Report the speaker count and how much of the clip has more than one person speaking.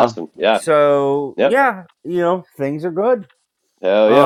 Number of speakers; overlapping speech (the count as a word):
two, about 11%